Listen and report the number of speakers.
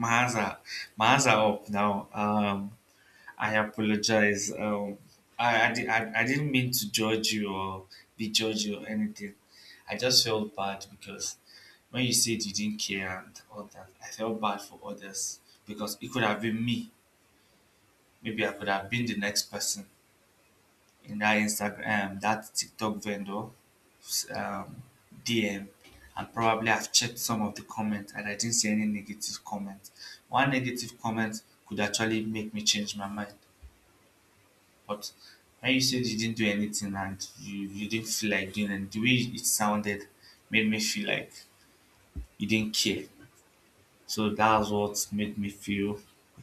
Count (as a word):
one